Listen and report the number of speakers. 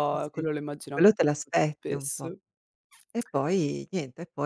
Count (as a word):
two